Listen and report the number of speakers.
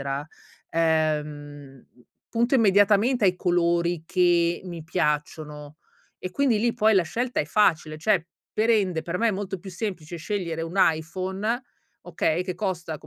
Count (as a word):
one